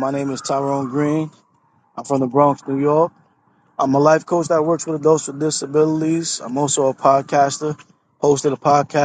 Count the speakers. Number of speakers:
one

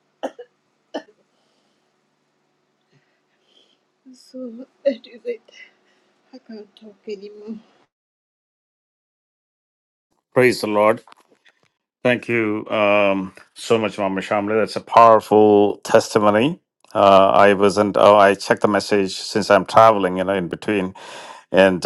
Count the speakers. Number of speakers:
two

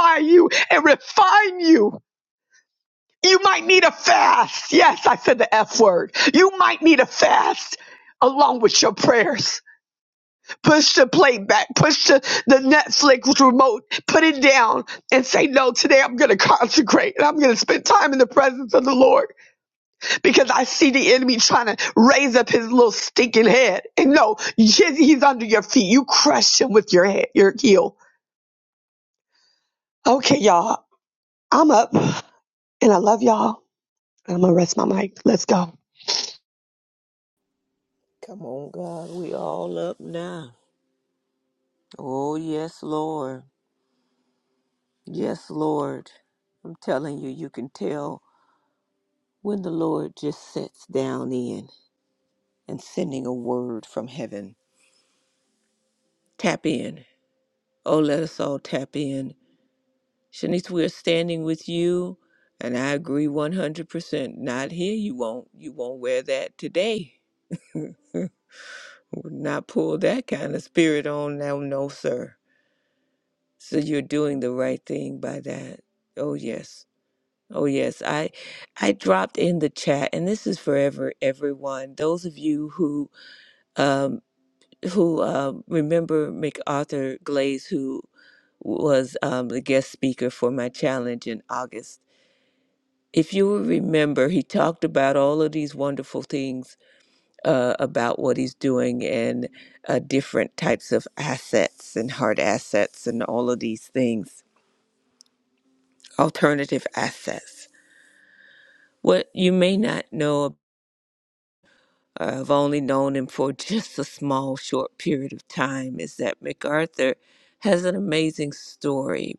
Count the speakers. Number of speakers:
two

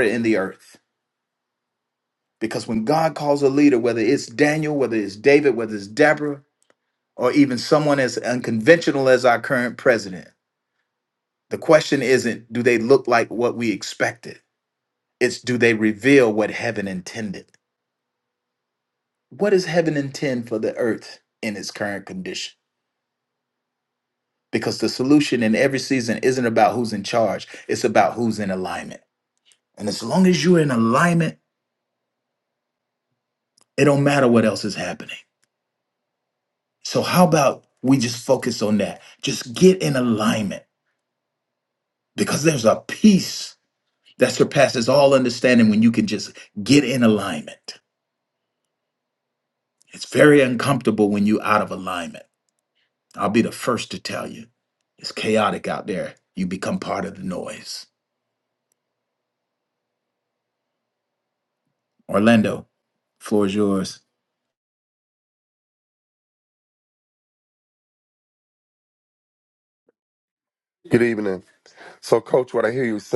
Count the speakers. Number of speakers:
two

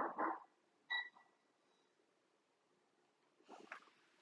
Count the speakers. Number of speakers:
zero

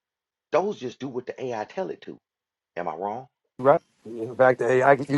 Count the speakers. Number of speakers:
two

